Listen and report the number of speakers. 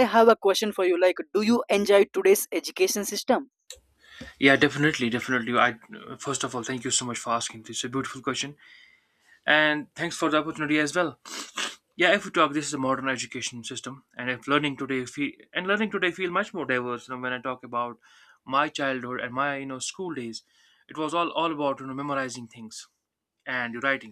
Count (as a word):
two